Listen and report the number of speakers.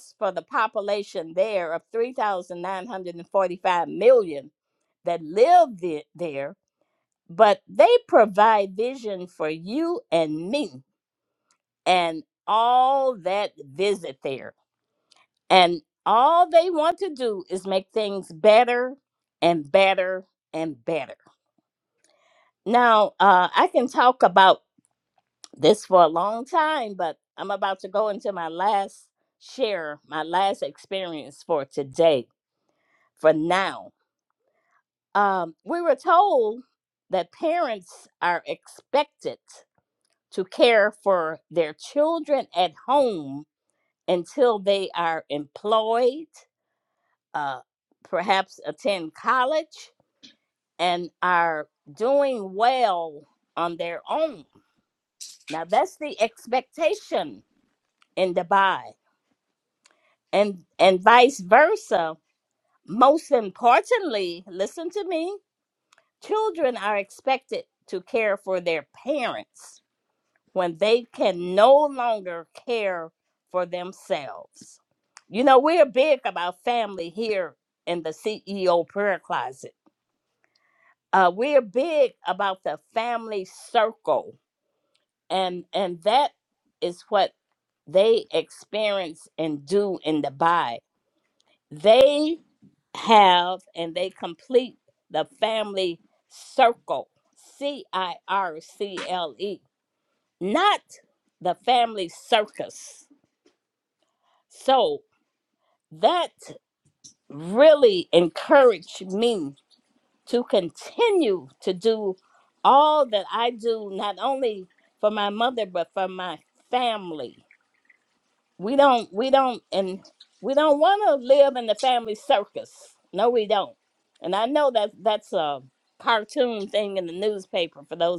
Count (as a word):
one